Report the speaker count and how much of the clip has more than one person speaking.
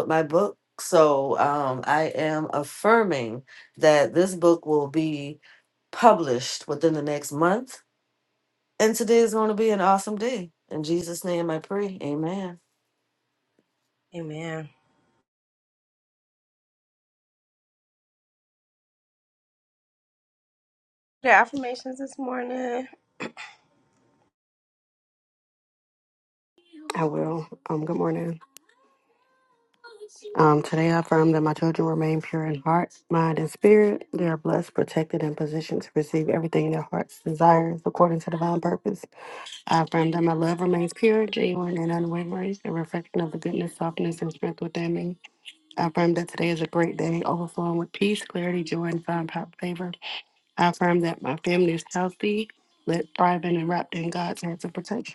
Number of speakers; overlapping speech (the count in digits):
3, no overlap